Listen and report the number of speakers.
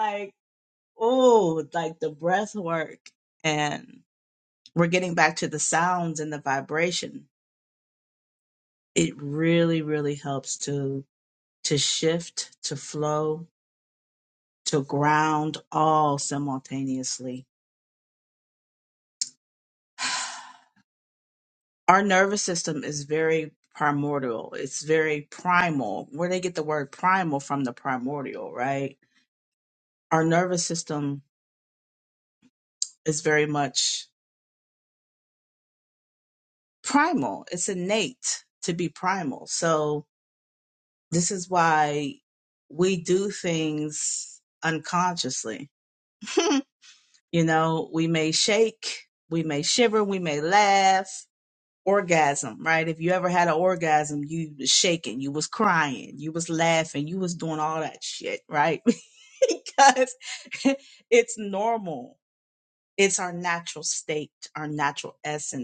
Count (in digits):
1